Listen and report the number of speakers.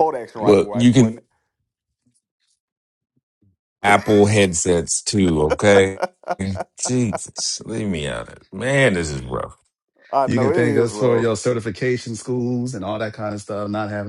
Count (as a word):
three